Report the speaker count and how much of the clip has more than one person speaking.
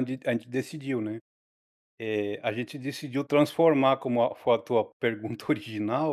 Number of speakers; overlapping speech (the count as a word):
one, no overlap